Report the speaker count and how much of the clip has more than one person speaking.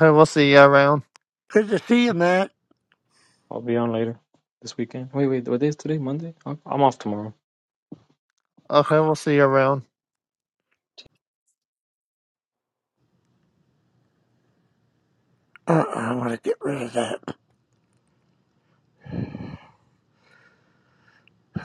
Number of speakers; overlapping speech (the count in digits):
3, no overlap